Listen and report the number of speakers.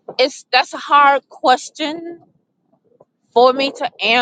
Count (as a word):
one